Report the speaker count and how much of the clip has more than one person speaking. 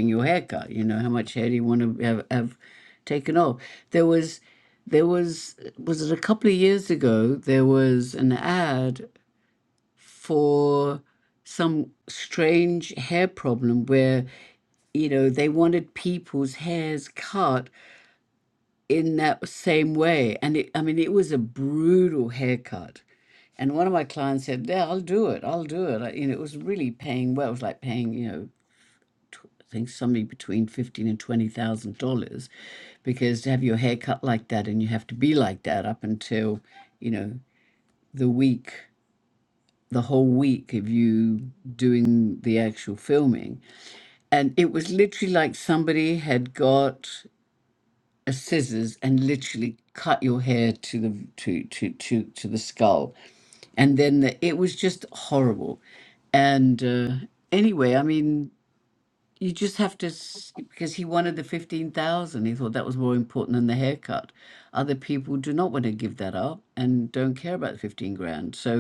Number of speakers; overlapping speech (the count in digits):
1, no overlap